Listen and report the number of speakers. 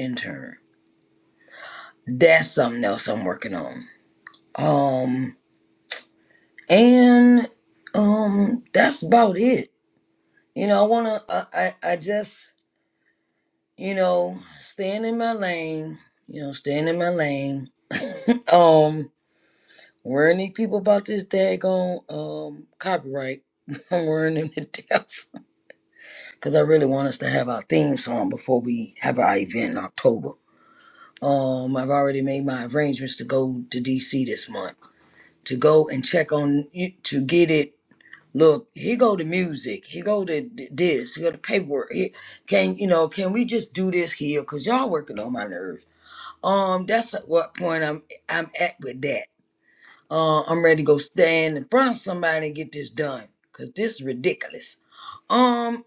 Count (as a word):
one